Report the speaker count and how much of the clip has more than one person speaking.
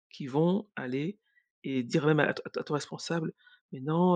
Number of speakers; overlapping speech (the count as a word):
one, no overlap